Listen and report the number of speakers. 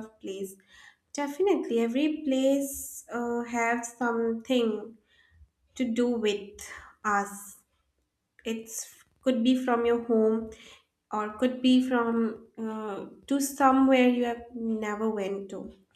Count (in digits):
1